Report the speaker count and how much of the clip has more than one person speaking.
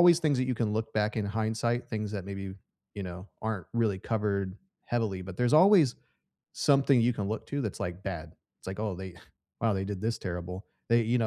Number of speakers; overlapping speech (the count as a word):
one, no overlap